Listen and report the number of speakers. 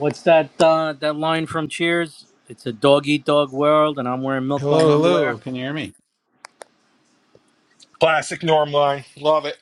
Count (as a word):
three